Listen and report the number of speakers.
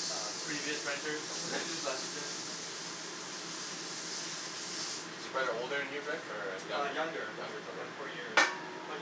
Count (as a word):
three